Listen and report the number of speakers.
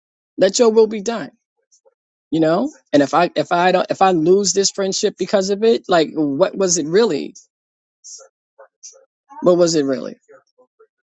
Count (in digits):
1